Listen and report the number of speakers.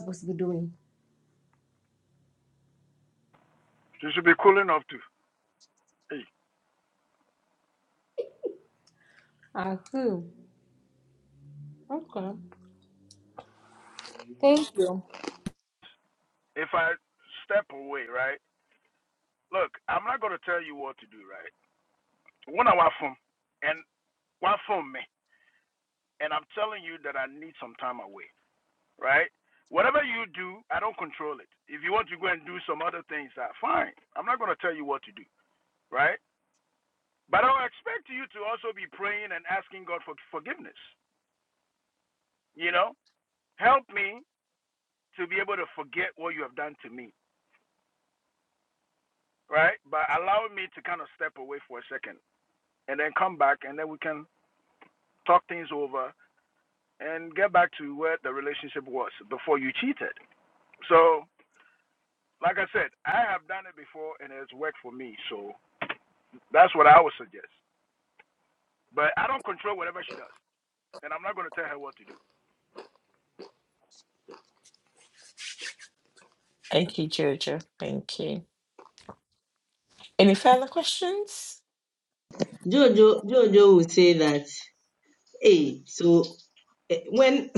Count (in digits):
4